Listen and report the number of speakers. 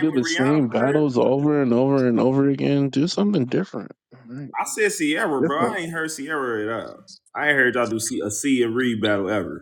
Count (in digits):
2